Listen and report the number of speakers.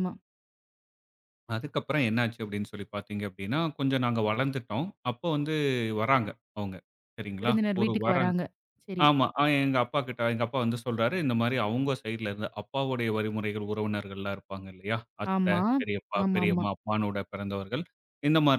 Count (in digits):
2